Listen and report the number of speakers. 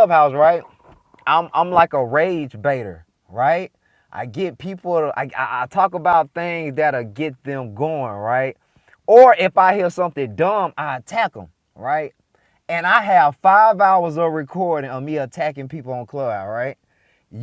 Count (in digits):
1